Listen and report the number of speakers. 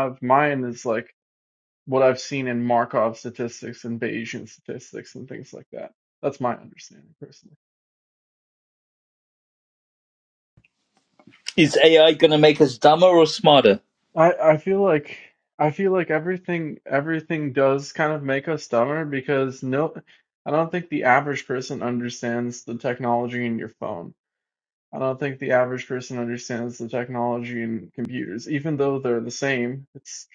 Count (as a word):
two